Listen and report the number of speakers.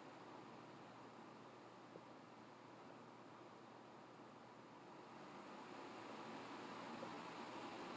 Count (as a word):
zero